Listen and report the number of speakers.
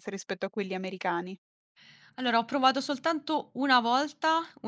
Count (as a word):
two